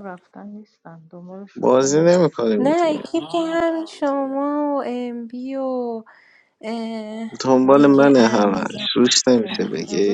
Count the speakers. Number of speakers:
3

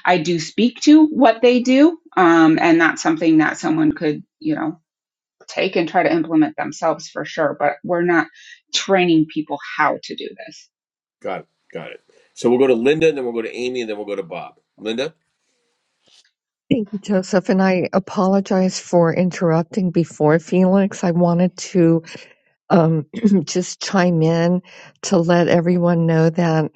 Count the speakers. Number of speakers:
3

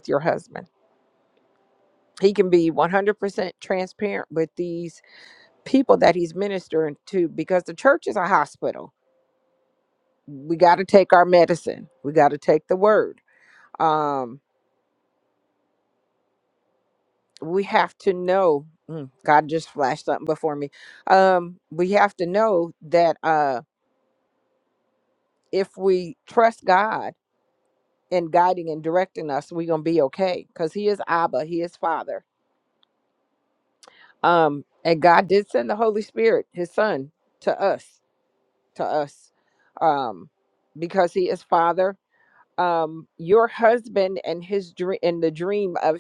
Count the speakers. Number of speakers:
1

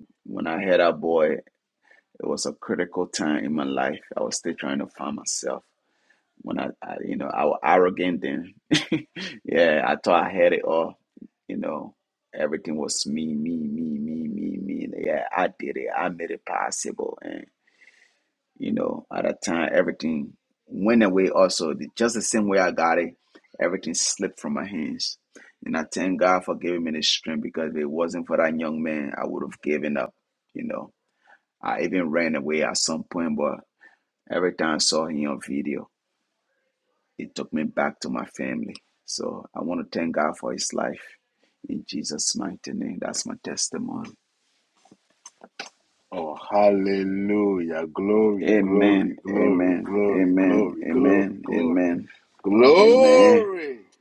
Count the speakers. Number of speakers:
2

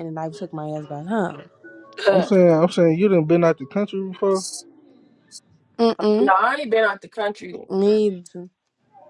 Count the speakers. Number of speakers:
3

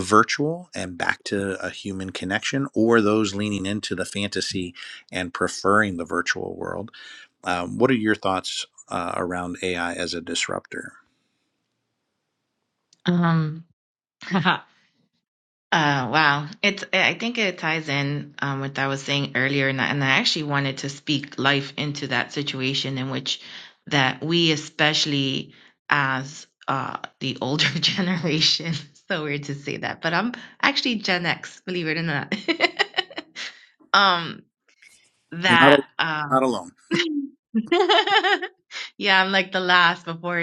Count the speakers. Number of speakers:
2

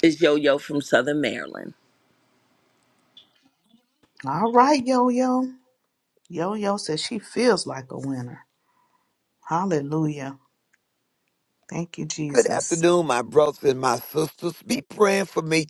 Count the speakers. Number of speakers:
3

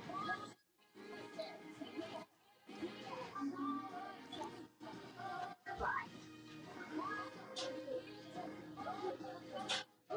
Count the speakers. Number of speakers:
0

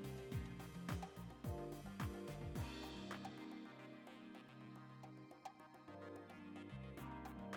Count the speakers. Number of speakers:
0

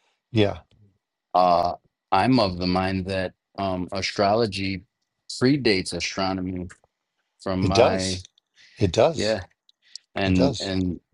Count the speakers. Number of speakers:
2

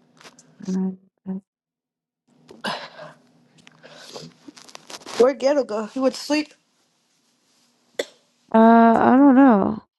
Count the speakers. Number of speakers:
2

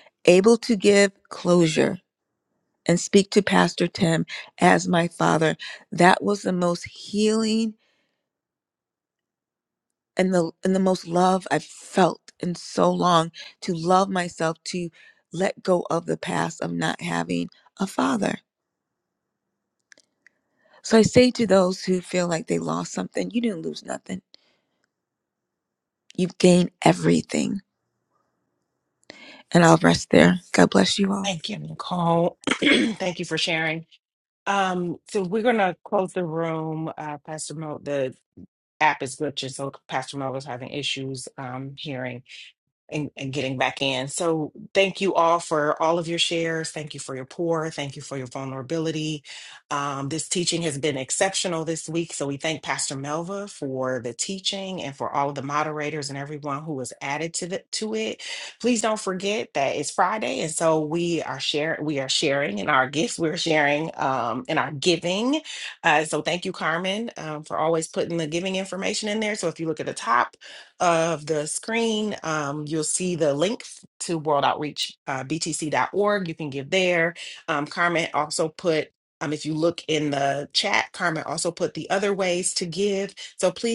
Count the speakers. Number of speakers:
2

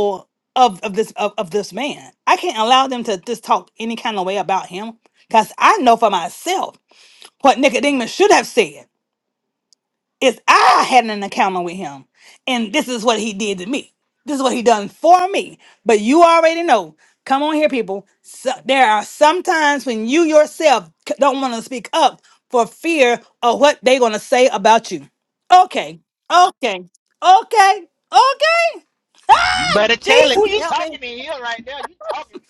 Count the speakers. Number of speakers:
2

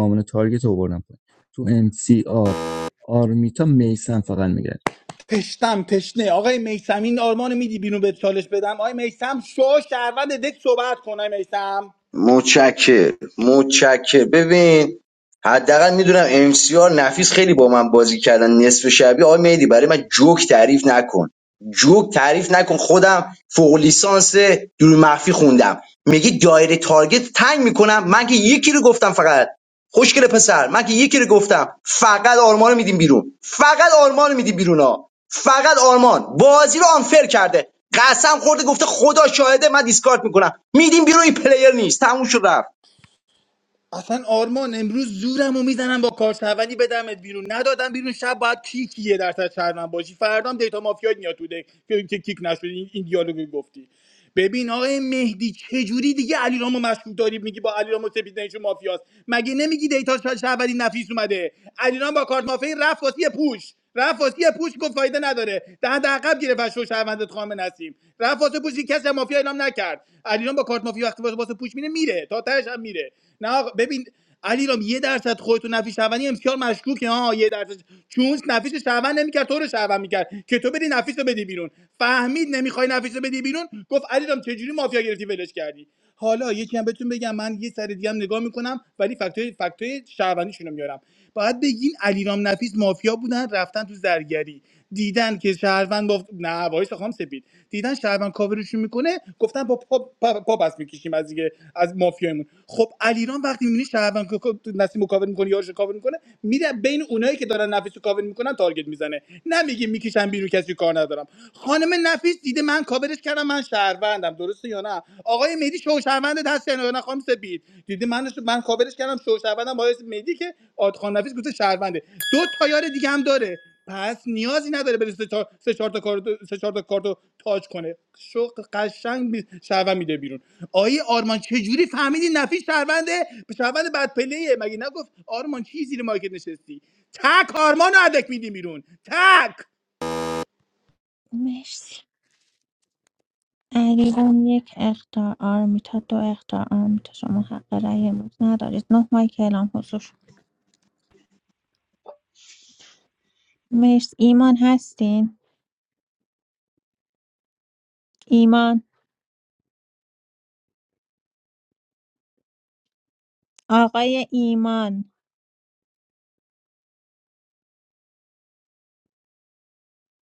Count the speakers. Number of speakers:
4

